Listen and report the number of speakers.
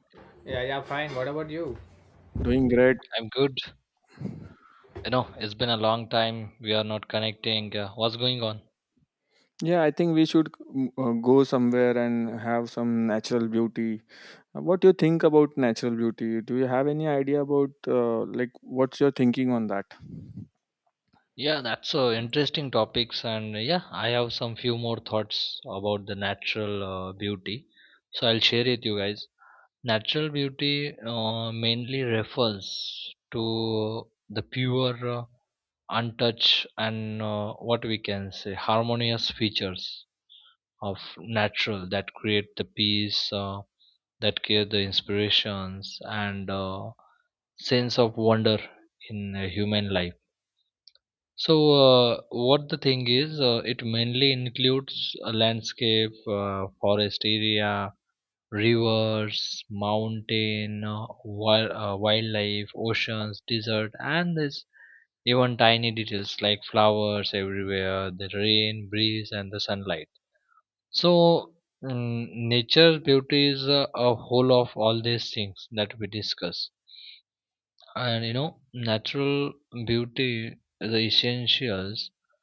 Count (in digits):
3